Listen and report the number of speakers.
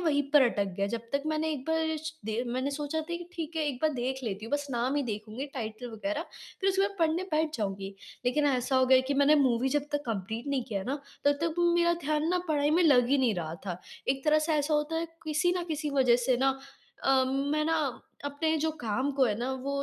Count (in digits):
1